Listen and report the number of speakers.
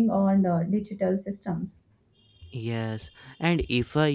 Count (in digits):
2